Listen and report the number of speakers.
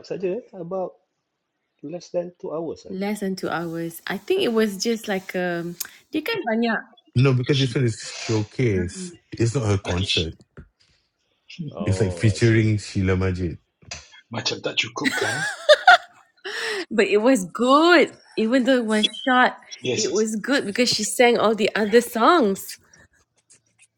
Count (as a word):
four